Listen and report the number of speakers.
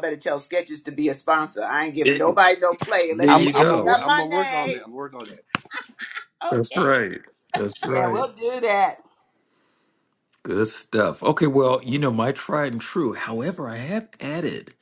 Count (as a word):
four